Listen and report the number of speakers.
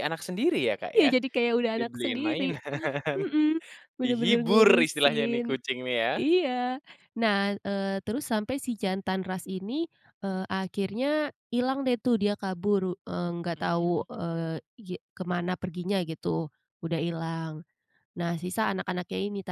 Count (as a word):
two